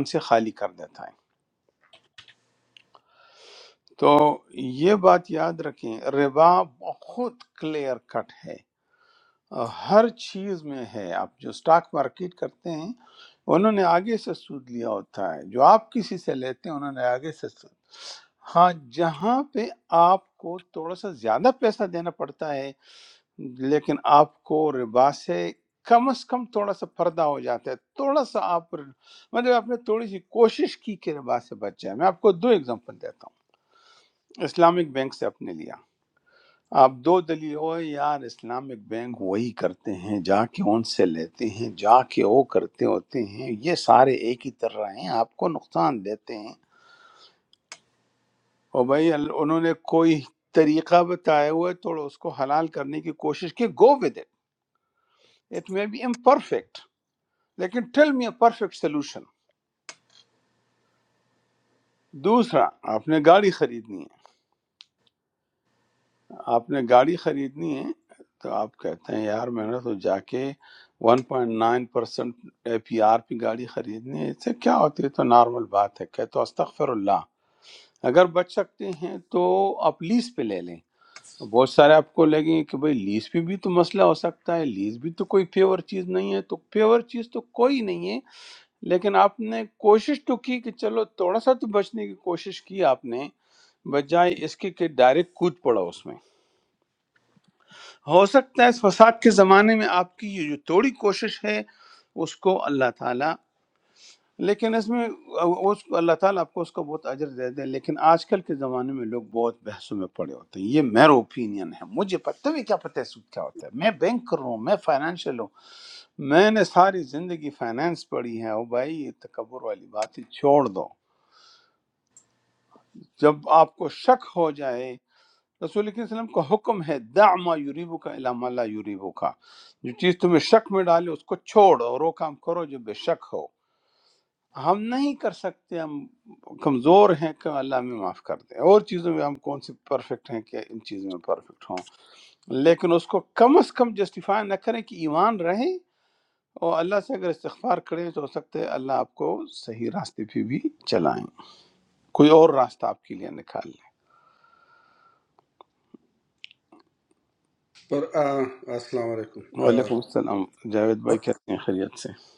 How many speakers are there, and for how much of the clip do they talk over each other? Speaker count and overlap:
2, under 1%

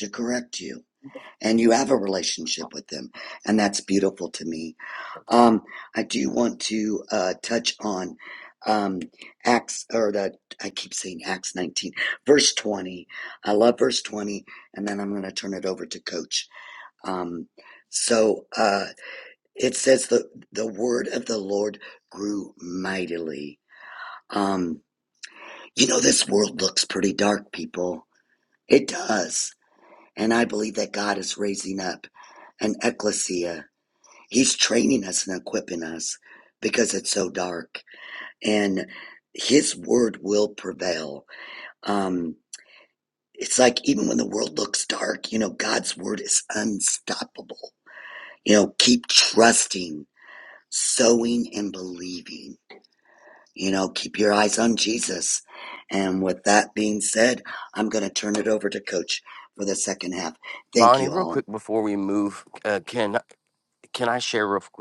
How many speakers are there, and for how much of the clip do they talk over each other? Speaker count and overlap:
2, about 1%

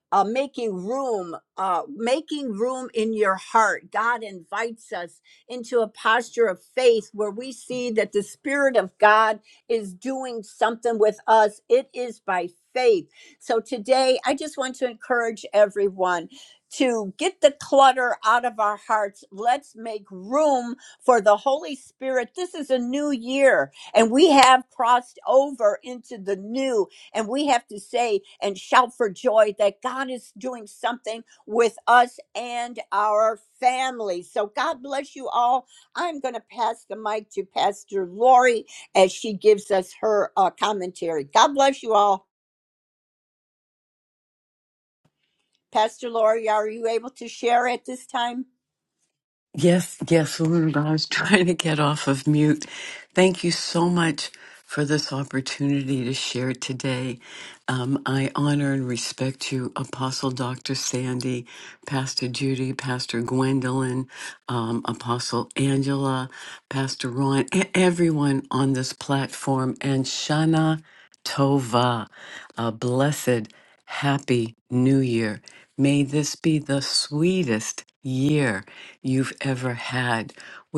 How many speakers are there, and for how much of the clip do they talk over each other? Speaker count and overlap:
2, no overlap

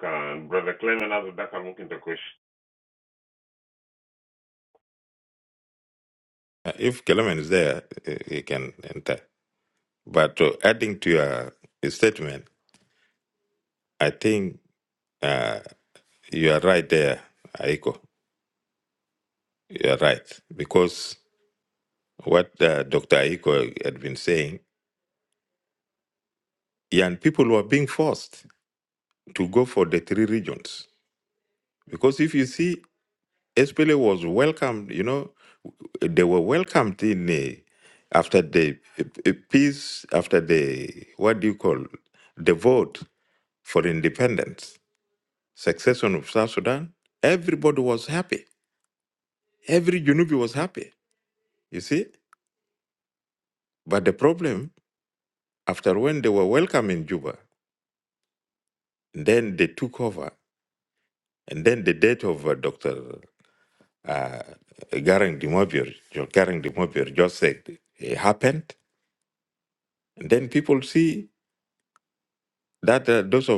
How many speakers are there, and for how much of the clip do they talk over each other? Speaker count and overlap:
2, no overlap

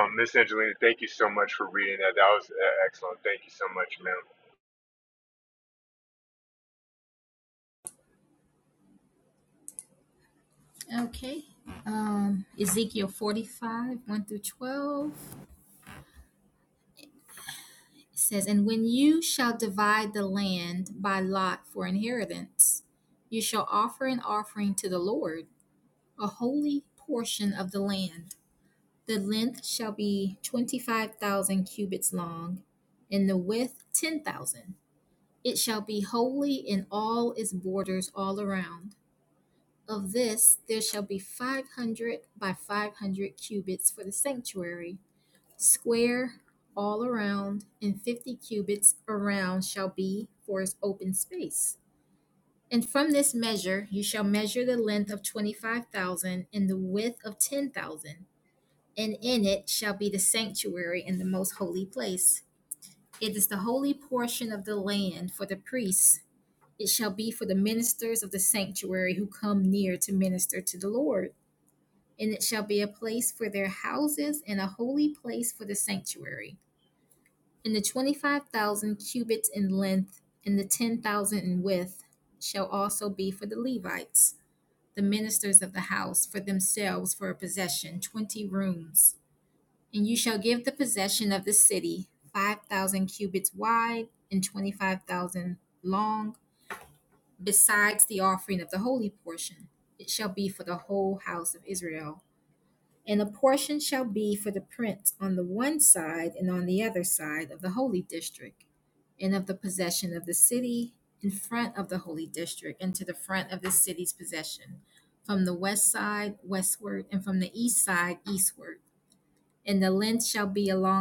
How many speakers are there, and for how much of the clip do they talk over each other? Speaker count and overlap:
2, no overlap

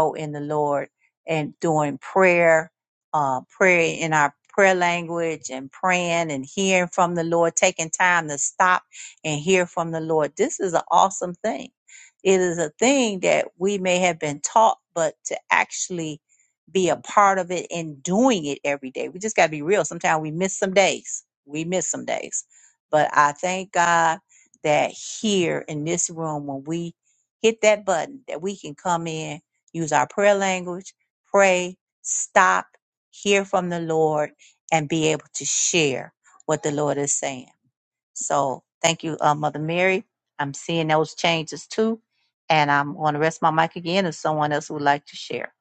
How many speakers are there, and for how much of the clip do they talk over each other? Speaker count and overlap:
1, no overlap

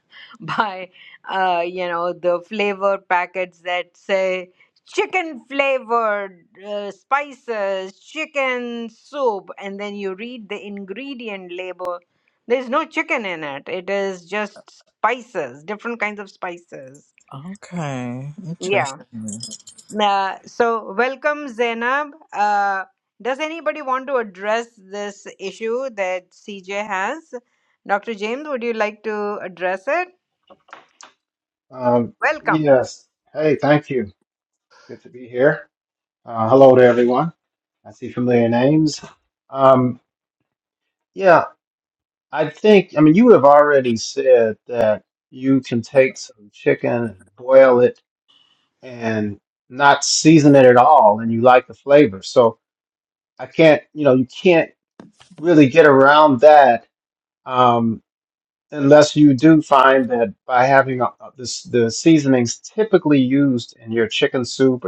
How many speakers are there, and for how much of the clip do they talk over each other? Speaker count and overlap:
3, about 1%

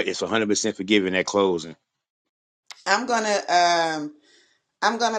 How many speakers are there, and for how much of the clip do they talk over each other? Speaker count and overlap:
2, no overlap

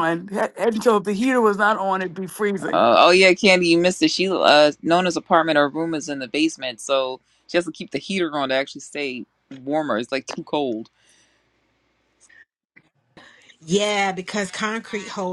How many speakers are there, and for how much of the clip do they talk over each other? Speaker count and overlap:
3, about 1%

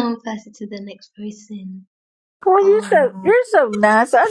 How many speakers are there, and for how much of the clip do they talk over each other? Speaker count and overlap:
2, about 9%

